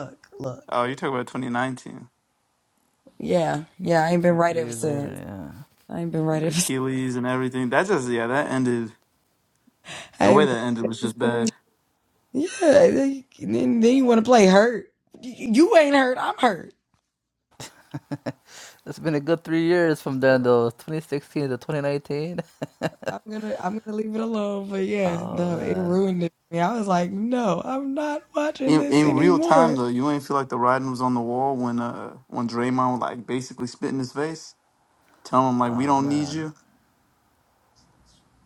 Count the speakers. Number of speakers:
3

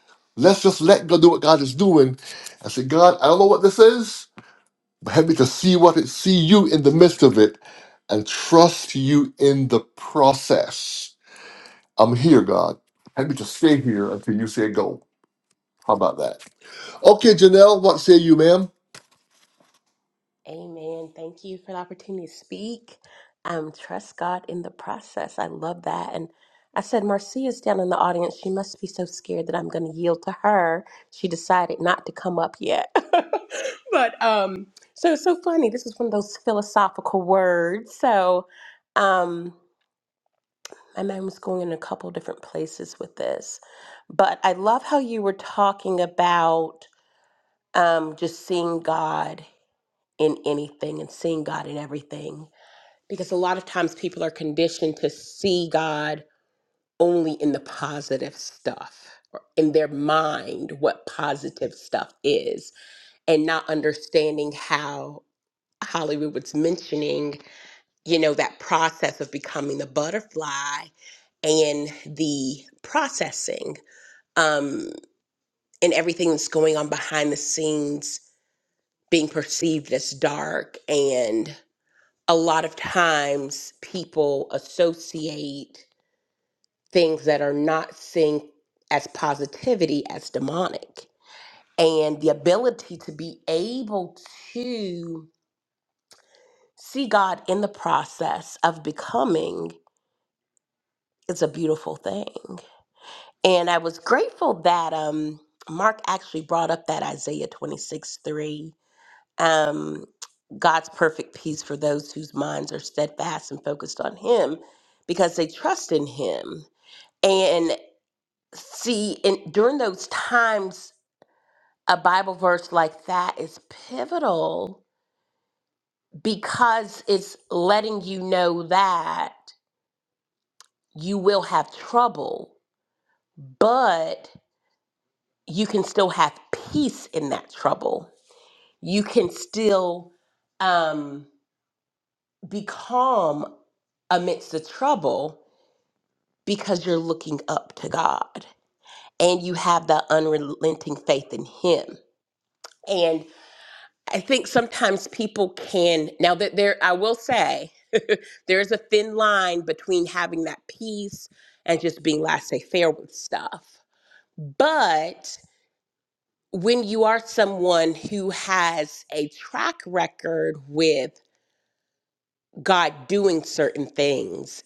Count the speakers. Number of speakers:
2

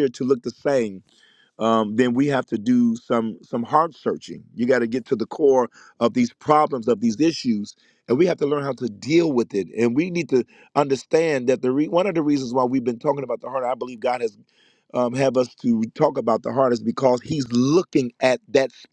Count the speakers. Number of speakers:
1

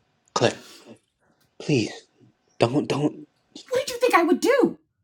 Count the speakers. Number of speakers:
2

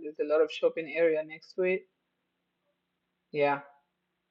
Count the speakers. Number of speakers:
1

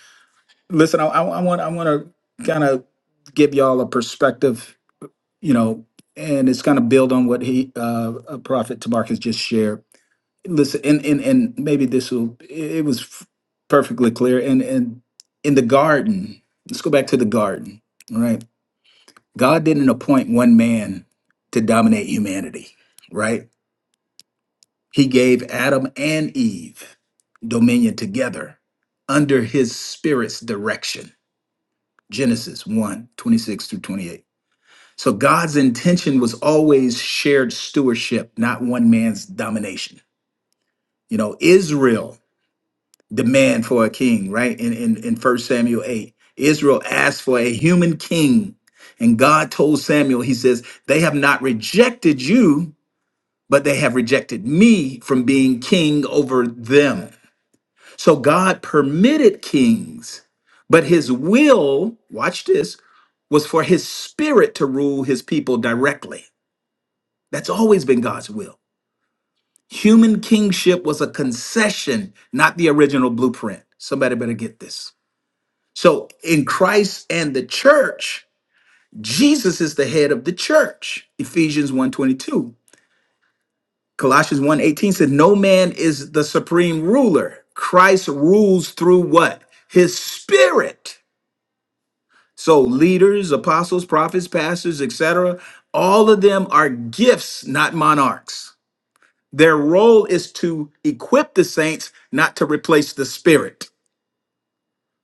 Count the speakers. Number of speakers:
1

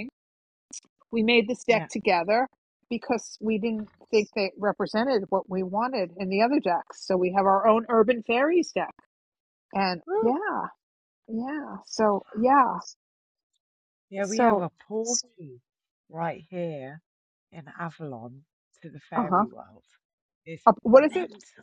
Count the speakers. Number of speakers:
2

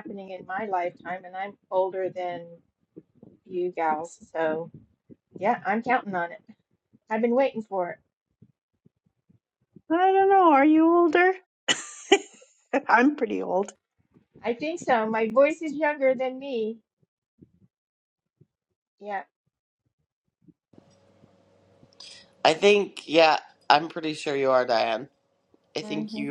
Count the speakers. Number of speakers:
3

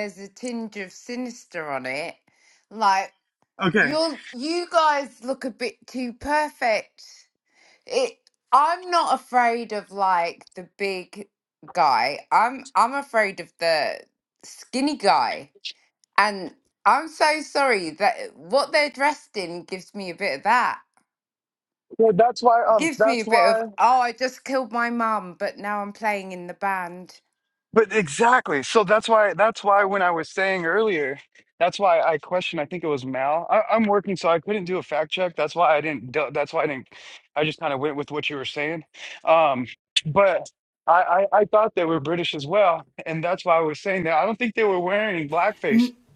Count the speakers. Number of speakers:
2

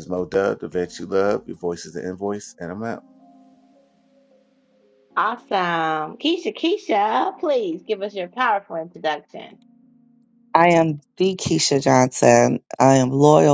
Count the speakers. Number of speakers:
3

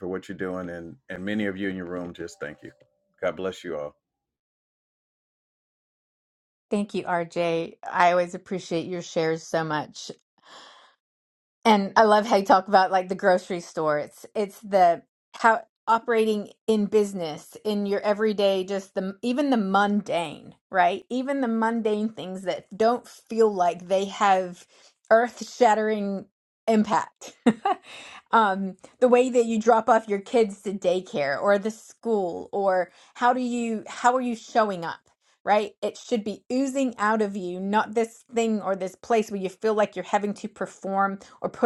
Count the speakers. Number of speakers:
2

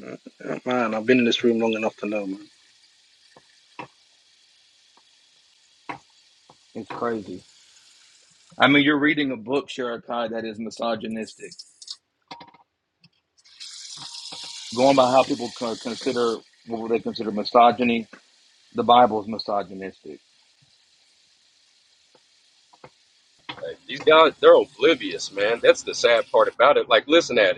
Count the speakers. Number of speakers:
3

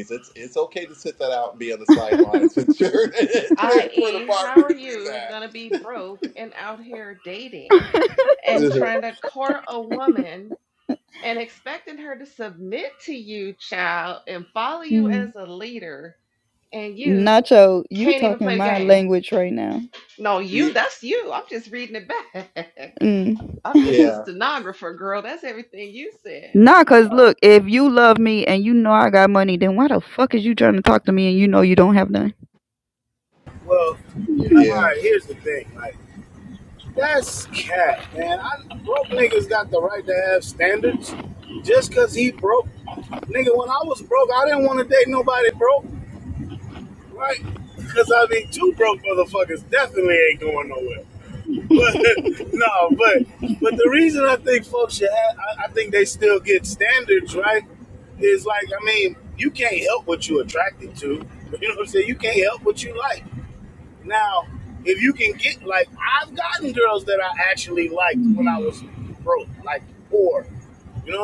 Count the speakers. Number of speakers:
4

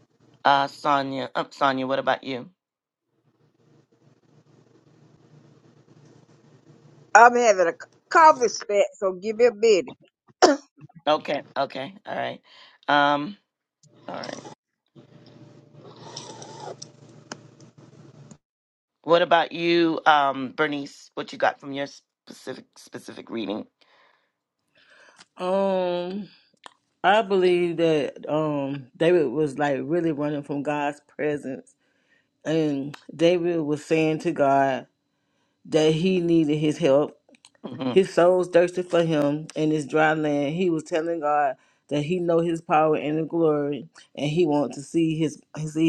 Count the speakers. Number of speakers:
3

